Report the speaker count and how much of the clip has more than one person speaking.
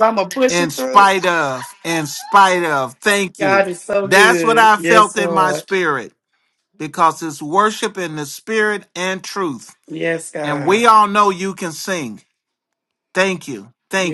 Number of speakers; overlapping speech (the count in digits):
2, about 20%